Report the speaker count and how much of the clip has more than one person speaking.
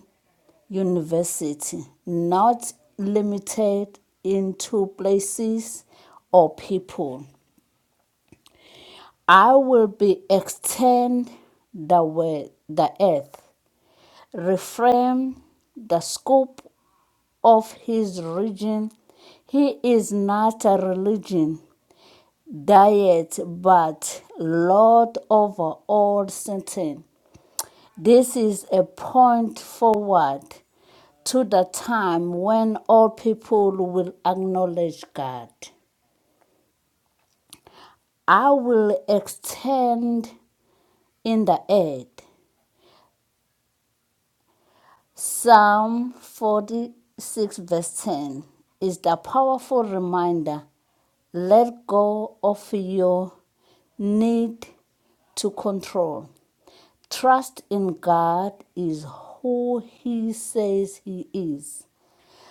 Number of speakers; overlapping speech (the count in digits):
1, no overlap